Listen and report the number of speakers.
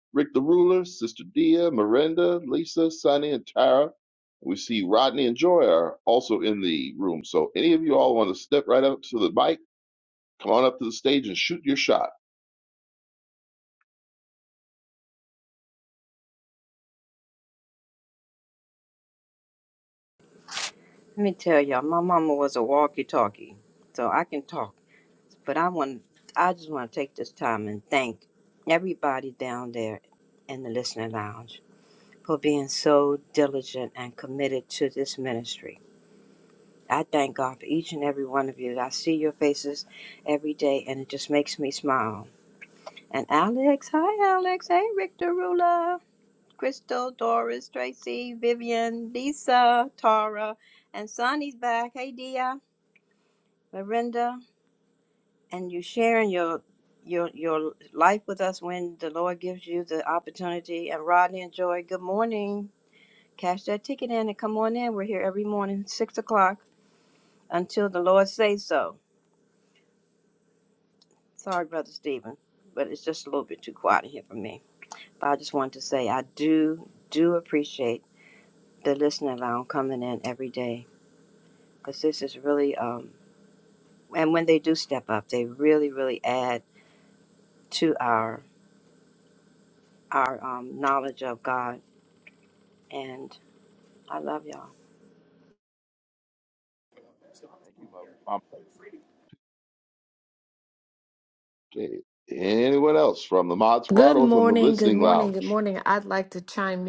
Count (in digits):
3